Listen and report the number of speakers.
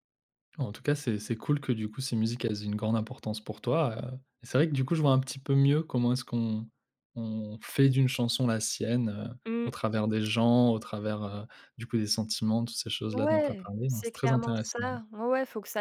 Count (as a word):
two